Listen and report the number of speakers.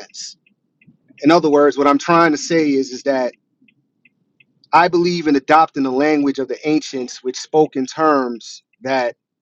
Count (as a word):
one